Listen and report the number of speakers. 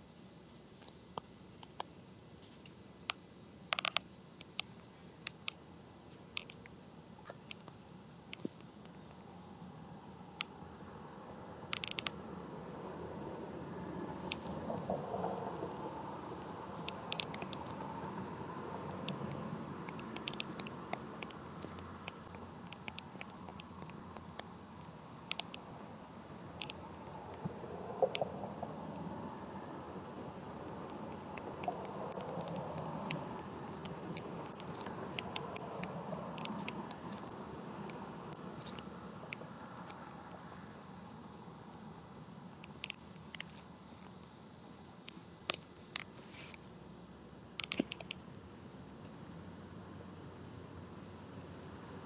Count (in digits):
0